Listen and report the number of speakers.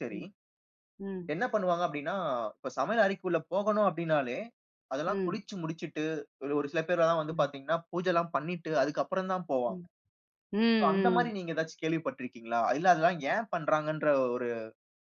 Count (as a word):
two